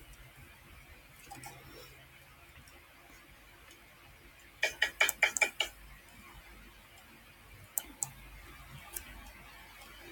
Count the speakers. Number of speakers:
zero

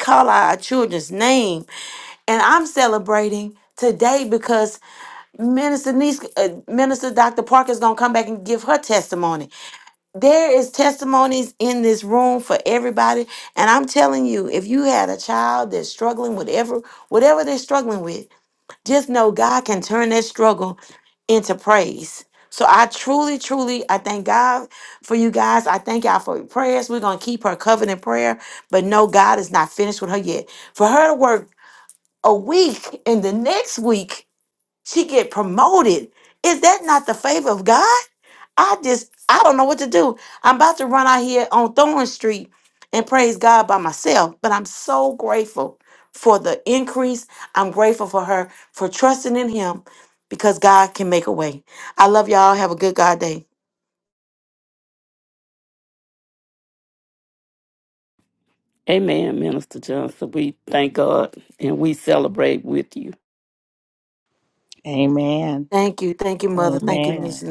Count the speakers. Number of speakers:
three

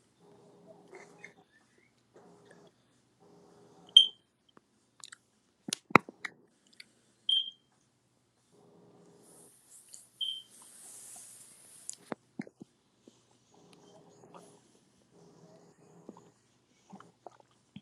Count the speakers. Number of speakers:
zero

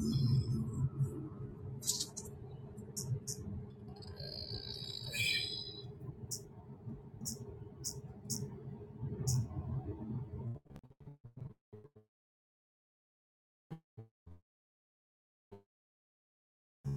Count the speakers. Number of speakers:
zero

